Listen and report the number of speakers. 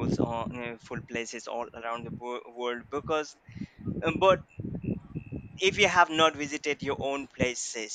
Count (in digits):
1